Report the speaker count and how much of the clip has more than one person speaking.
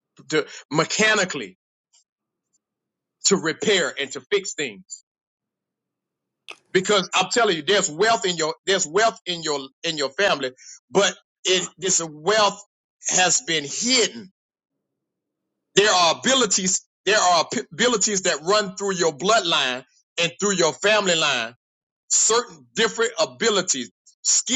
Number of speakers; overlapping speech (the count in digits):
1, no overlap